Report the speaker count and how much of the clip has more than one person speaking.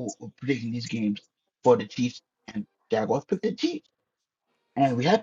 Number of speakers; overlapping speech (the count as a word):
one, no overlap